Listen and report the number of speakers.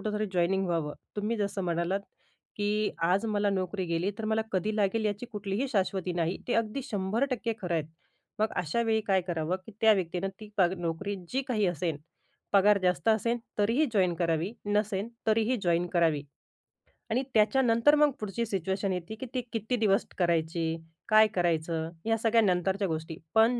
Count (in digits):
1